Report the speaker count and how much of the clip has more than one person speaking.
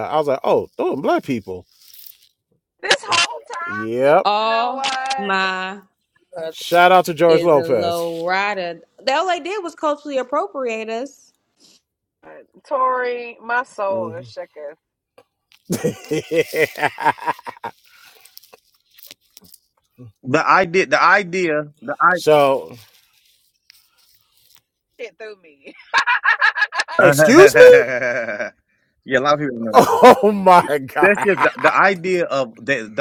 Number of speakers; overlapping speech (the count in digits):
4, about 7%